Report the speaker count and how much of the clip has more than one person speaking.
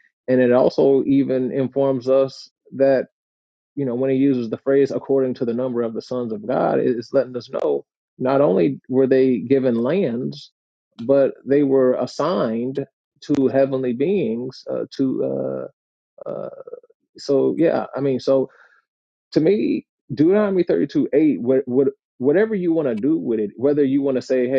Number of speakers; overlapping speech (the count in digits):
1, no overlap